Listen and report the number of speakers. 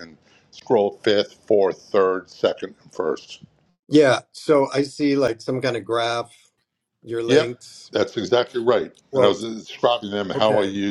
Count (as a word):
two